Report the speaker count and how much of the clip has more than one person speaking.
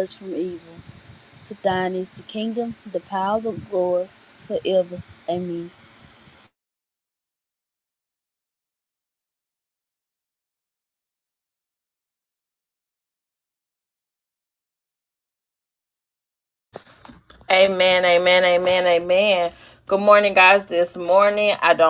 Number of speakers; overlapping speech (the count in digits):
2, no overlap